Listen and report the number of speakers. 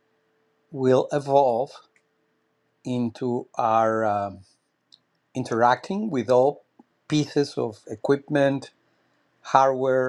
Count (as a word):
one